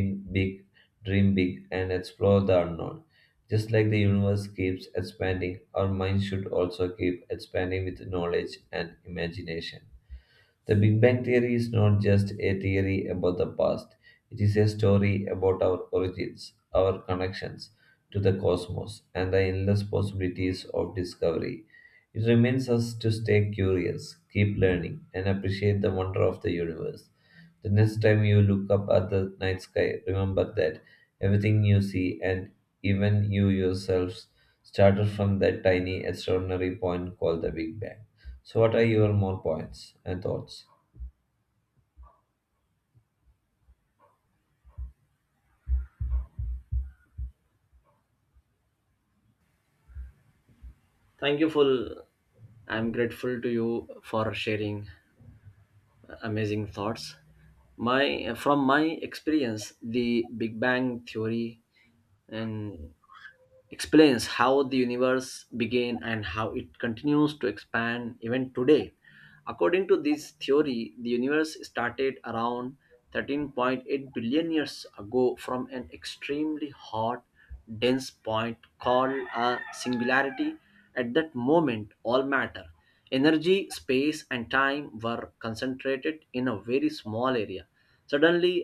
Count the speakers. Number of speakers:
2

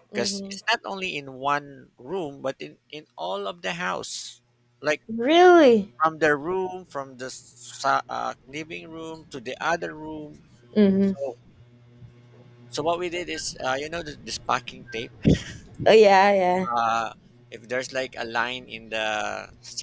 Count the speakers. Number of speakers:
2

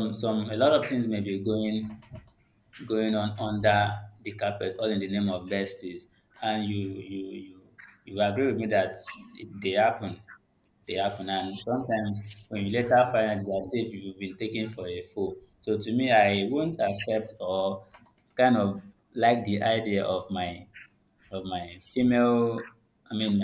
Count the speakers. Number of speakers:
1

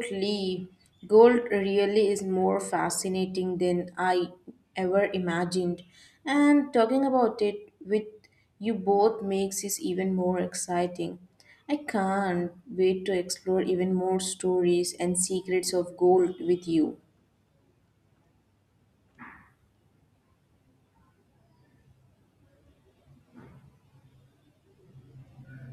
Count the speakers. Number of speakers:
1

